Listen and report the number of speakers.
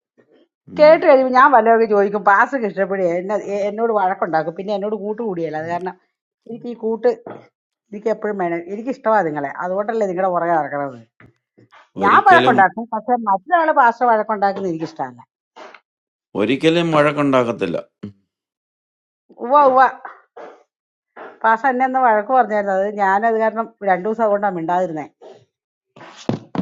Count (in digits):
2